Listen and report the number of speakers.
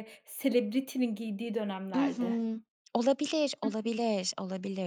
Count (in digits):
2